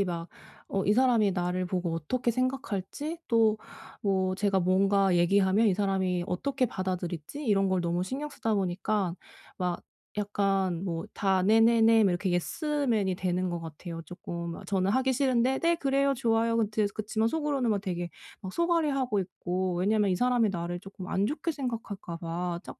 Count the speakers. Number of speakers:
1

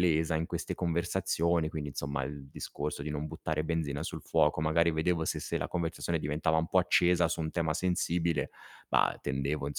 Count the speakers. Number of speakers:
1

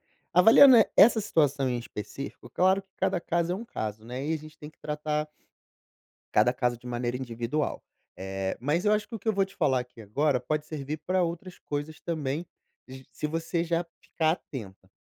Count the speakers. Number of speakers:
1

